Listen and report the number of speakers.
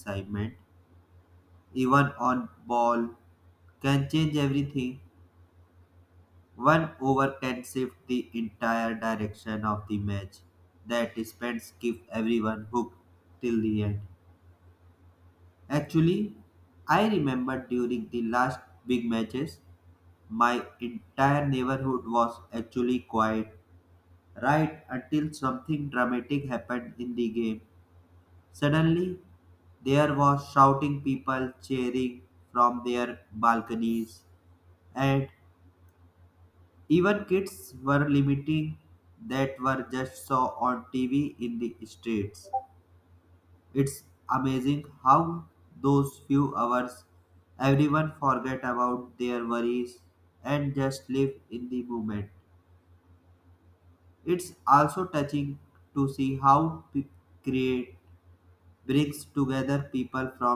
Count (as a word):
one